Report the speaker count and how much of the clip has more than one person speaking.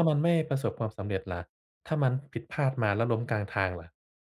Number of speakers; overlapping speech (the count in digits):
1, no overlap